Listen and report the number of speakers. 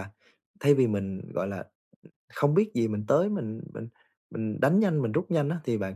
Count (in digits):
1